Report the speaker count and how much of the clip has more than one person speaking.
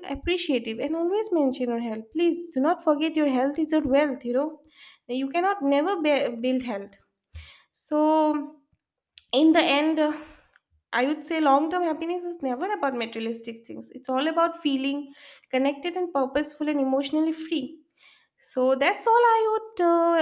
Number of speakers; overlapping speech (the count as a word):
one, no overlap